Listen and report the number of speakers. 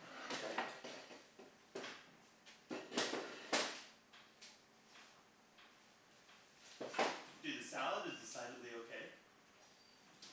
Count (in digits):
1